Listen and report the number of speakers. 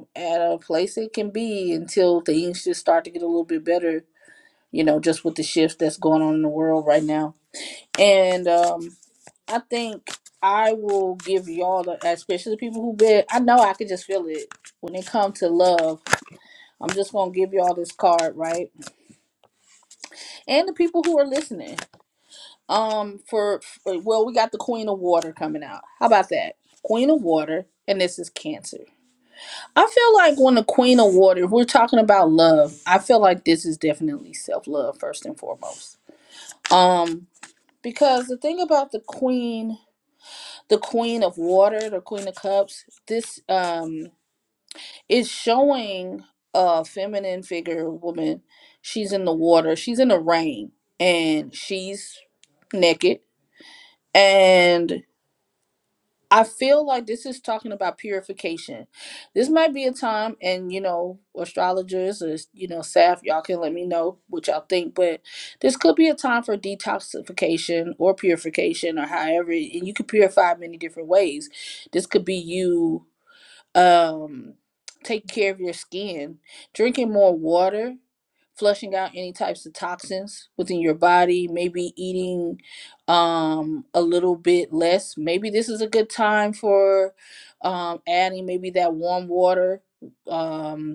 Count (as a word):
one